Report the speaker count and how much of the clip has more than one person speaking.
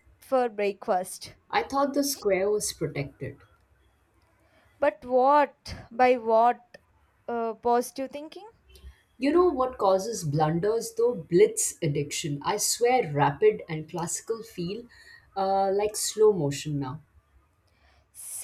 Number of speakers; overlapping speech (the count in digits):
2, no overlap